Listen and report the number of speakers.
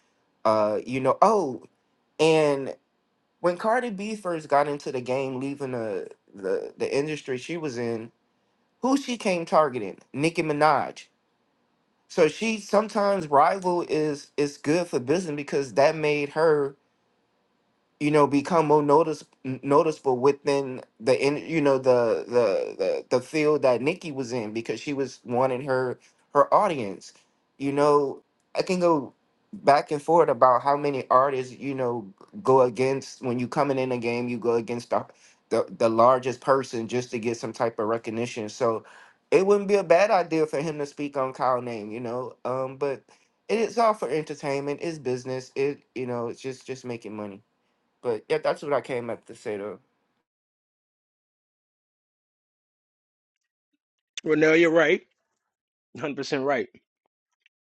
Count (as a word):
two